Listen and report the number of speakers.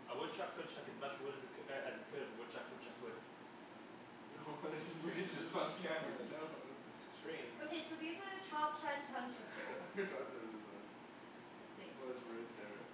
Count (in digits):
4